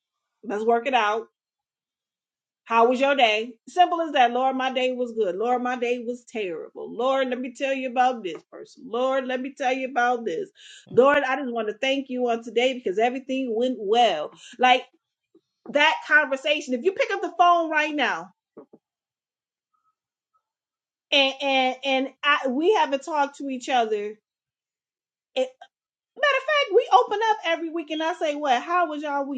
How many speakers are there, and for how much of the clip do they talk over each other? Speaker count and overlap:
one, no overlap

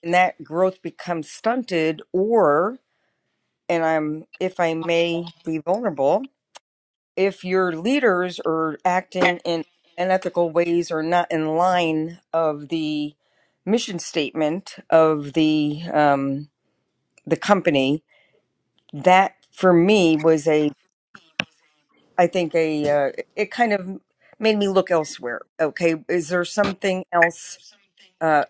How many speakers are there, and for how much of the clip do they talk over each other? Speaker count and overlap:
one, no overlap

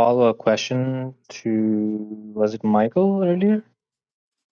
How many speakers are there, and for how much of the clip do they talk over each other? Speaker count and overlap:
one, no overlap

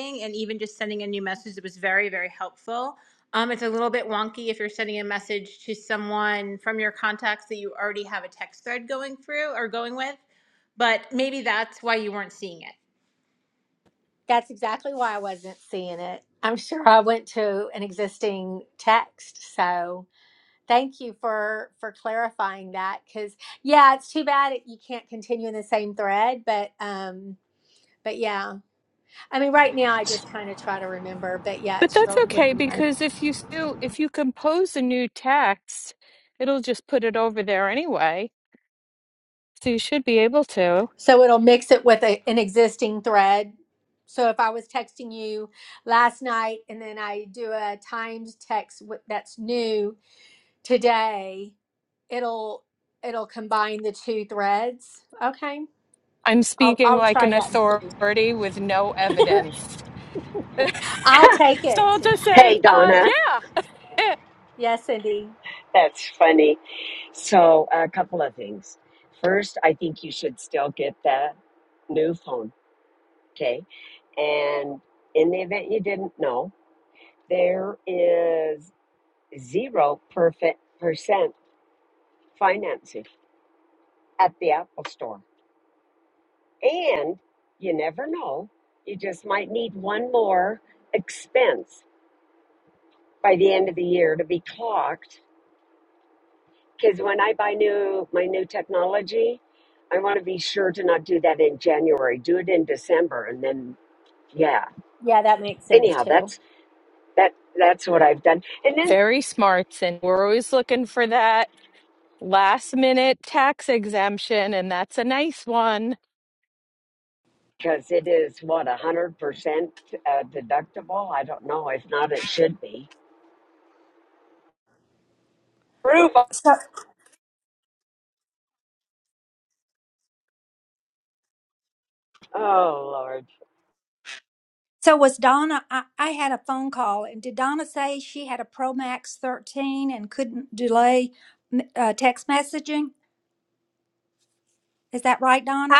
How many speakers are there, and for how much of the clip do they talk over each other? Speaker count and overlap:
five, about 3%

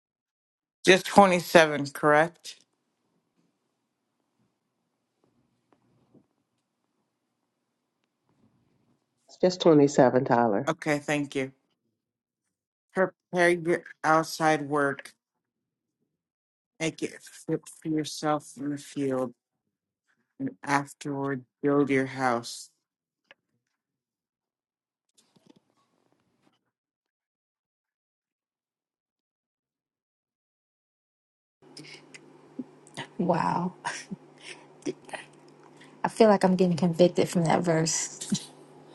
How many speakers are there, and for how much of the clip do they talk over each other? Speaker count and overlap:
three, no overlap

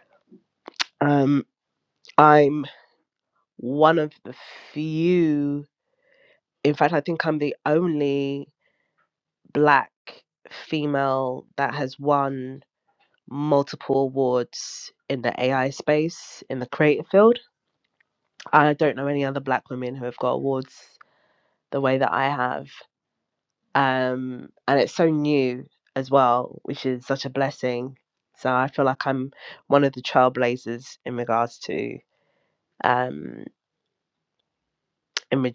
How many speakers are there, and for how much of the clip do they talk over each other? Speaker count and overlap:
one, no overlap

